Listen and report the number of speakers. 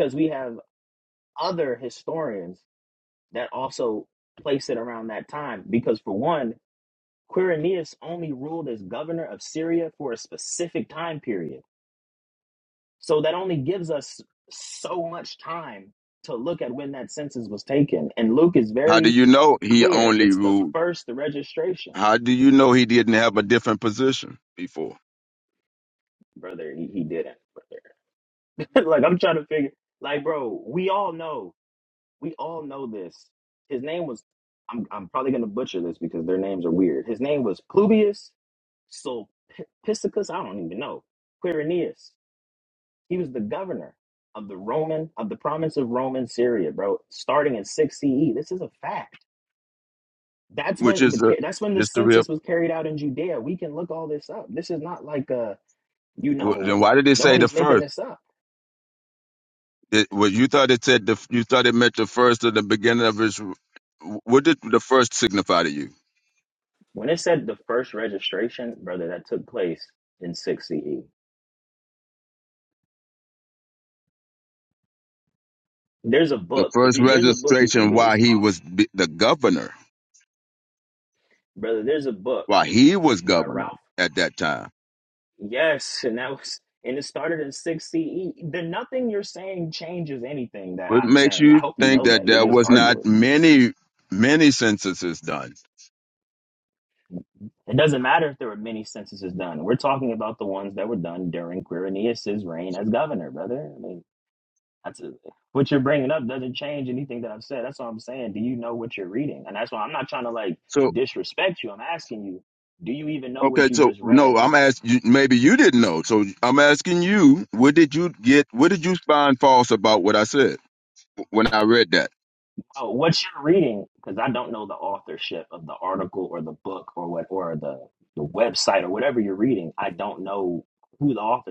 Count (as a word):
two